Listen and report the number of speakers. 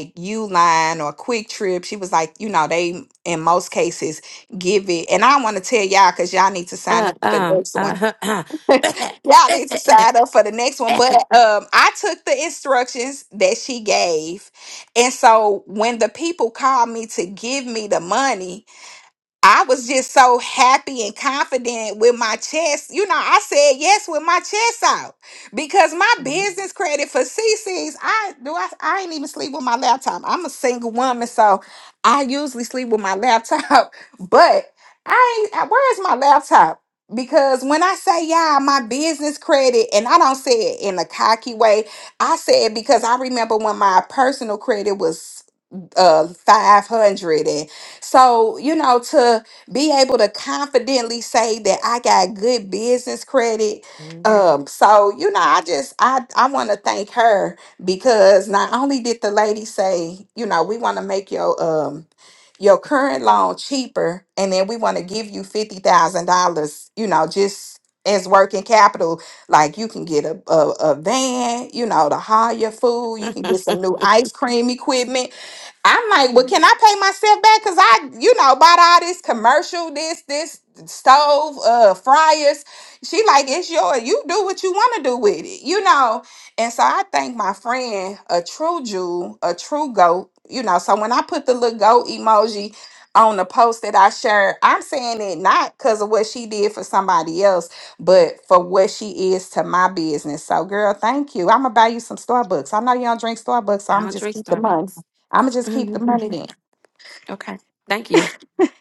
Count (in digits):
2